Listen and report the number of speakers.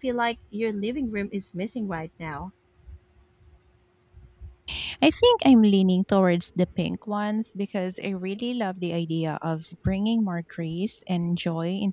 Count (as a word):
two